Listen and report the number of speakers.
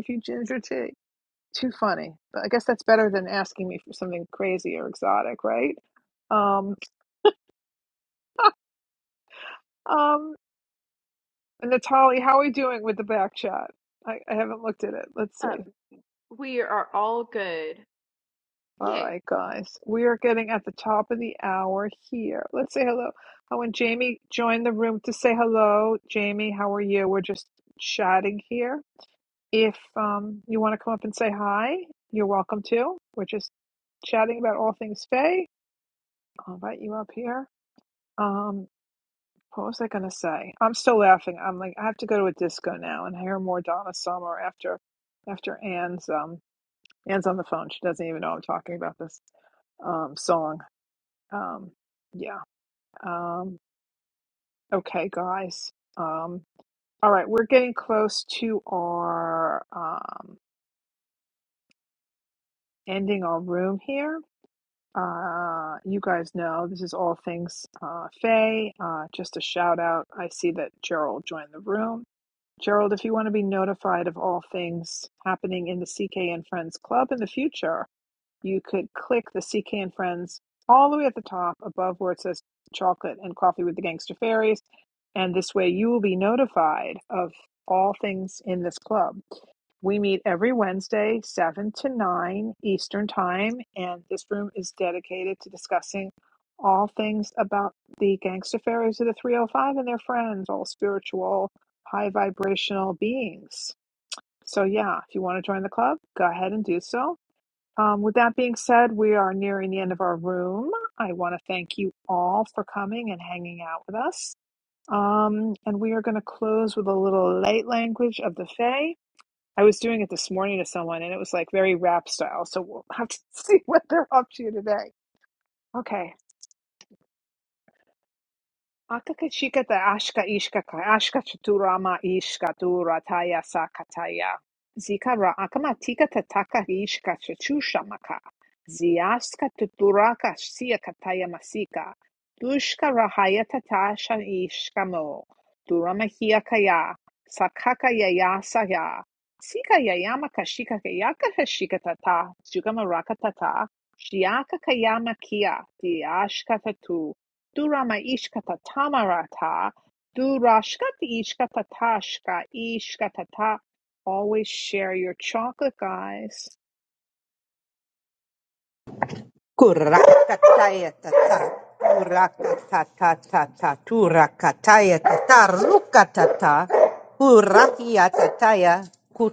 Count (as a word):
three